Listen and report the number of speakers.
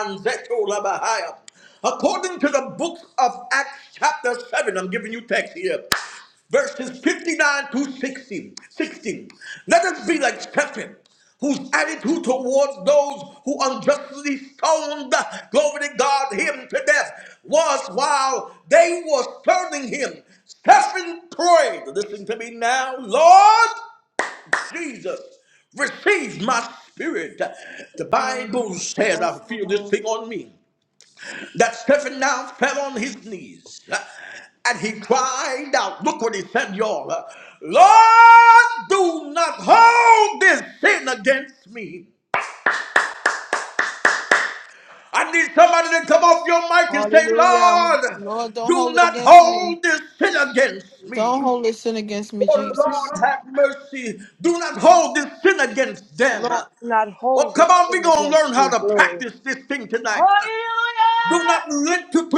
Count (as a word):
three